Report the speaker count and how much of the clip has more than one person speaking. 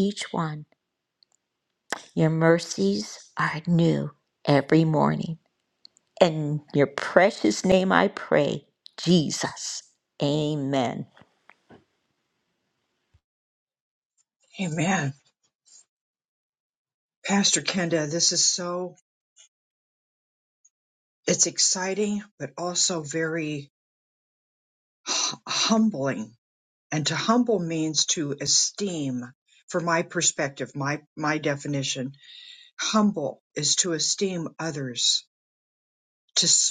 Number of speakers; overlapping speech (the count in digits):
2, no overlap